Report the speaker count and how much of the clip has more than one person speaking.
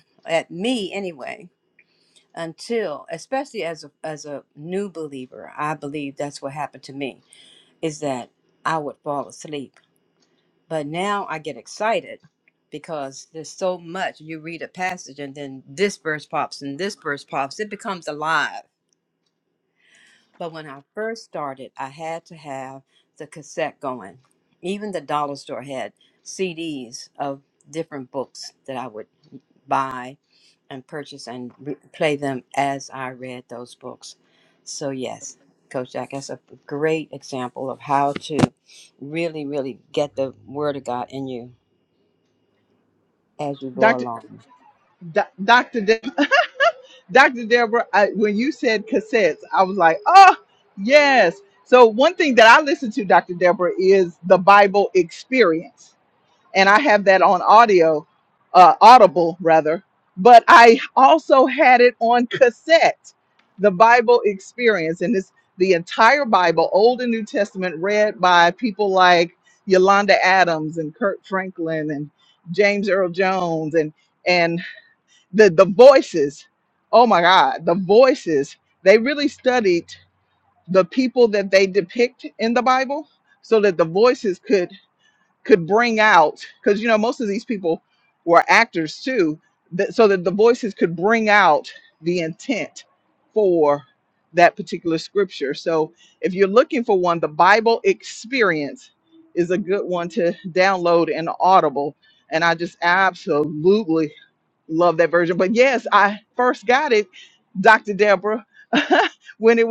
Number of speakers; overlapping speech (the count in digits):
2, under 1%